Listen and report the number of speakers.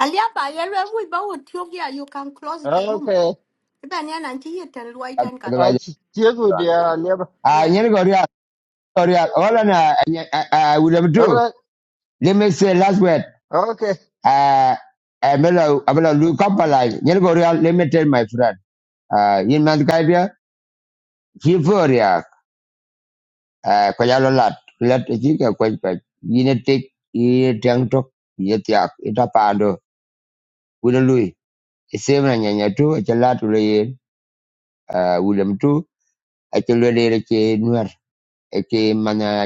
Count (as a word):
three